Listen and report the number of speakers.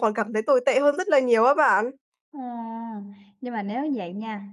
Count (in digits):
2